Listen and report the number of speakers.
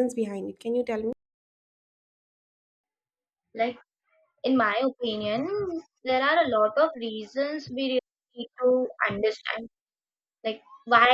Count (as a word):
two